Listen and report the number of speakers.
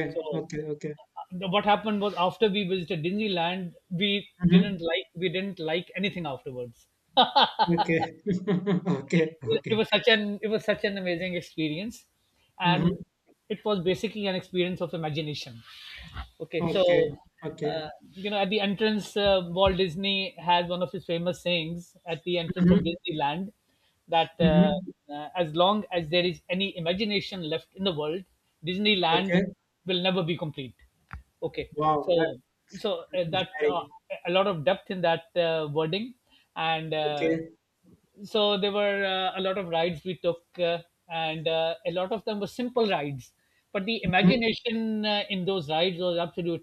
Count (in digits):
2